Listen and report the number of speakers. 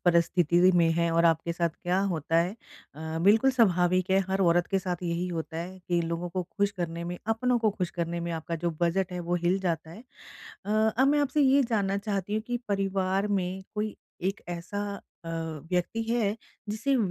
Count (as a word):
one